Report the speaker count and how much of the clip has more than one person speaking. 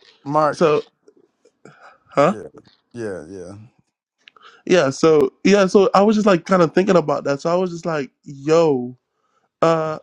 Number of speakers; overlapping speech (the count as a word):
two, about 1%